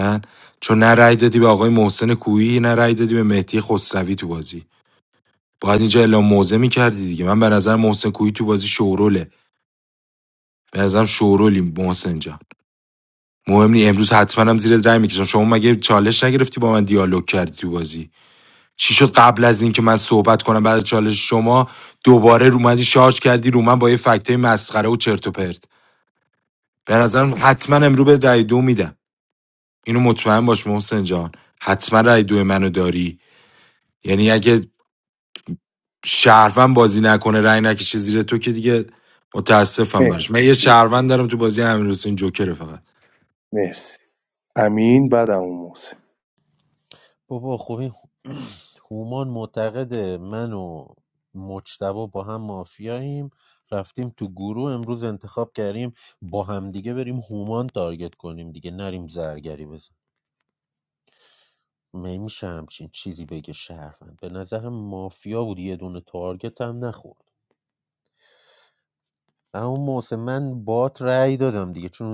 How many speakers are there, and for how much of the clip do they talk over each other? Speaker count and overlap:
three, about 1%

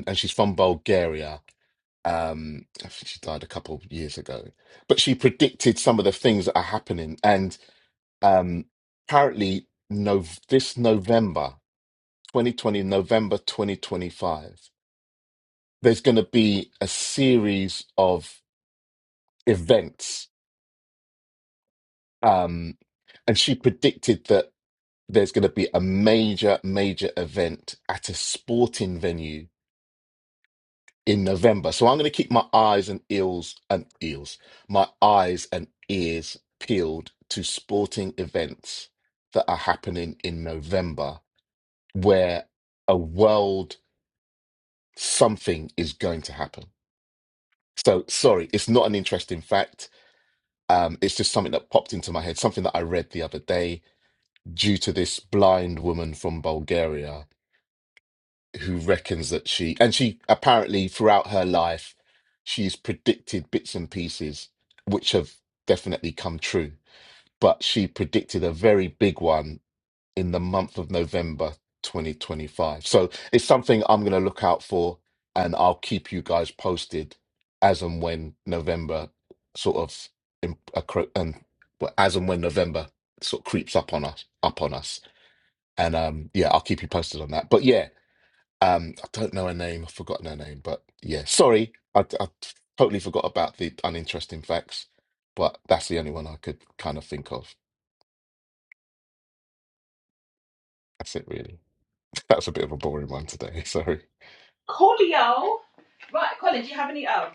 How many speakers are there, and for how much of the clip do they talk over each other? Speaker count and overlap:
two, no overlap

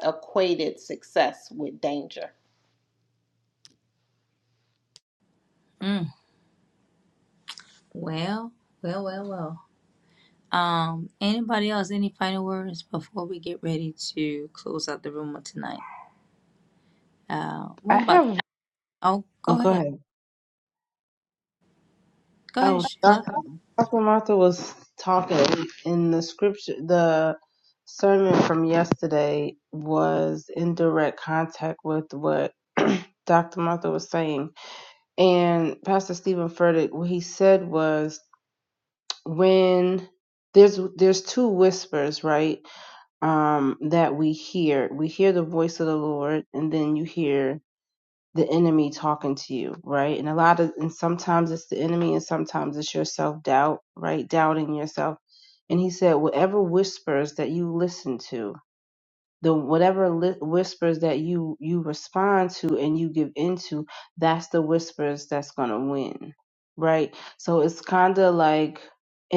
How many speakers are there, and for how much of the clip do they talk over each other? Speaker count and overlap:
three, about 2%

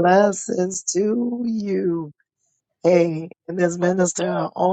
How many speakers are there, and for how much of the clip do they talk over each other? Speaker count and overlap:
one, no overlap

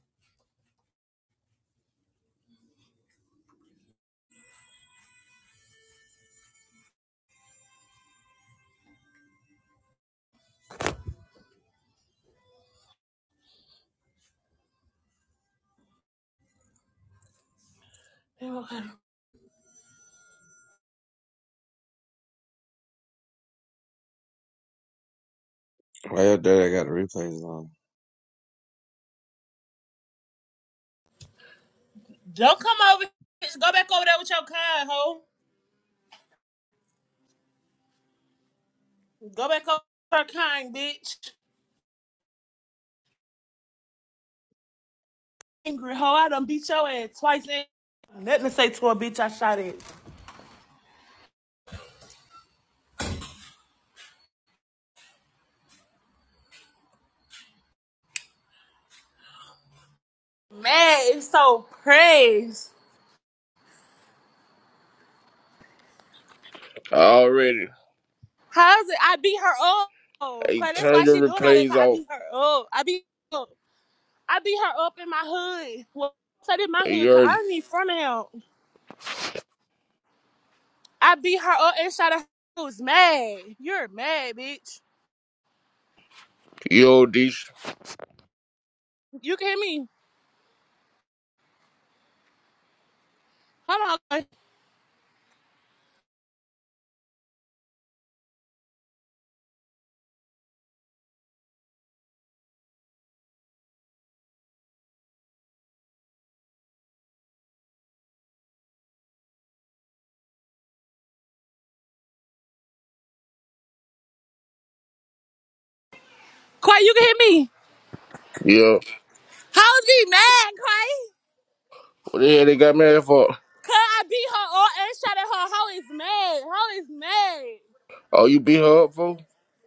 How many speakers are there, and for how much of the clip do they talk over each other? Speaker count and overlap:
three, about 2%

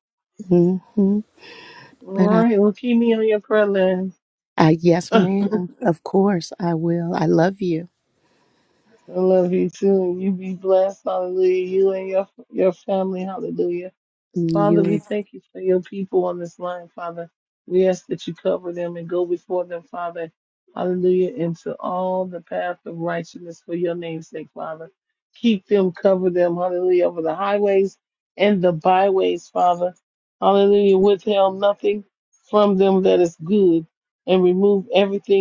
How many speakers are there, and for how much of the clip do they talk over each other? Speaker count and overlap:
two, about 2%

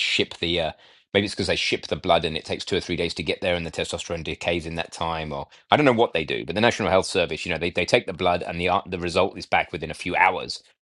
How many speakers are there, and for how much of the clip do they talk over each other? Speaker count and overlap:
one, no overlap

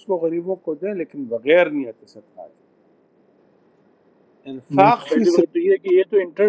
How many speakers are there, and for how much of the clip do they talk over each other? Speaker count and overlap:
two, about 11%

